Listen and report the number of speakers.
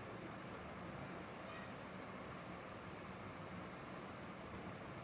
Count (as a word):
zero